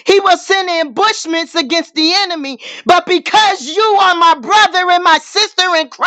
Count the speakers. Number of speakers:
1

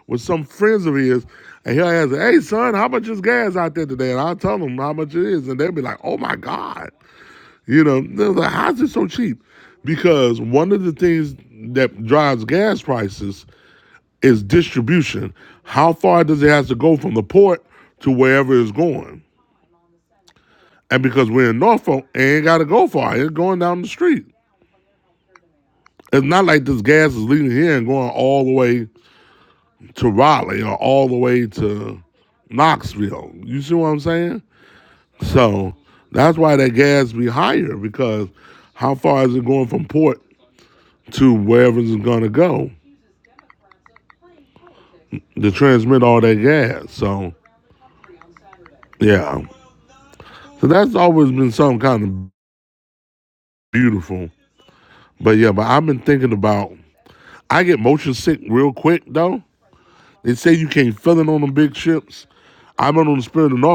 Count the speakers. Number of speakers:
1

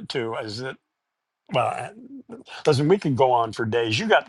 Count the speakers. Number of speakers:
1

